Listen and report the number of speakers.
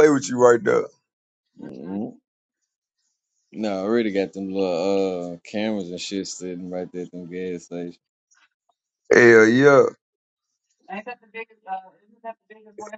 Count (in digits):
3